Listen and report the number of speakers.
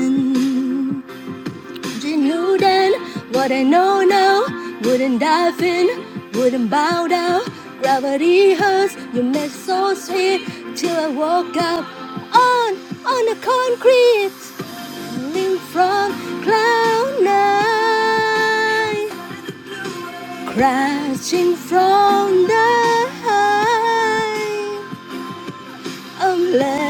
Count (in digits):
1